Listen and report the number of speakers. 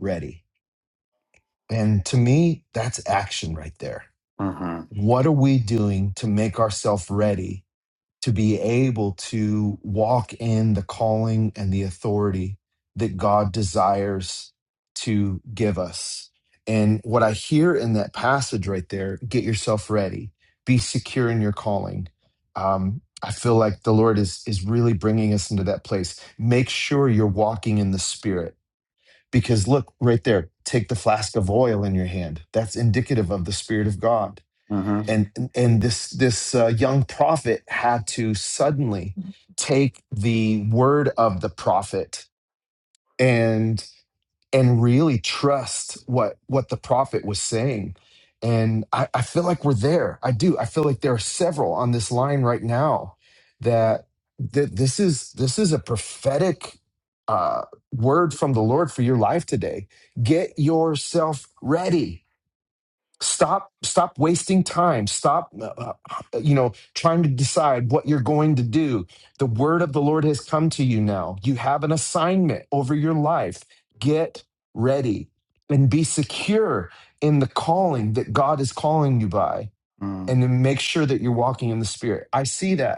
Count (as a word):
two